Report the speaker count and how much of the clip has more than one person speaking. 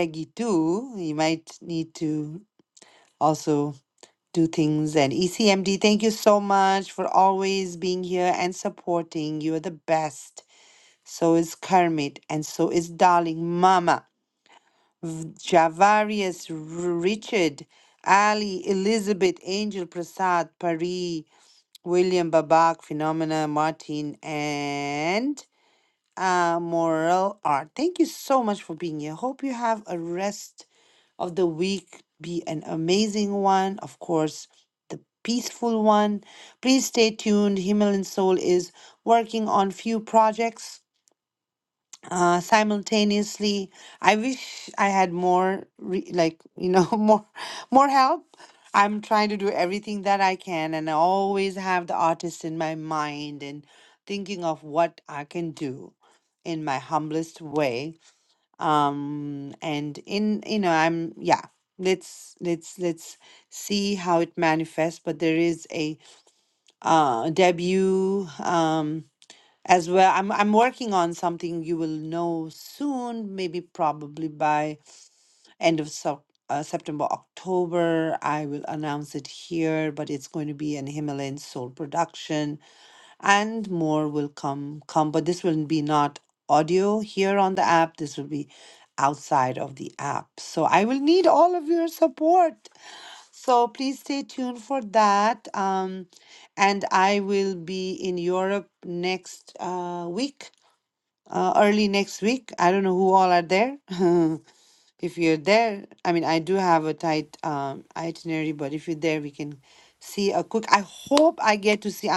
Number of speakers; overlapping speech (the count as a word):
one, no overlap